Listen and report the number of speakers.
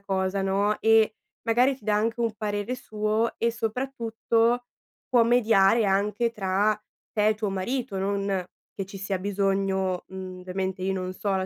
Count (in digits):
1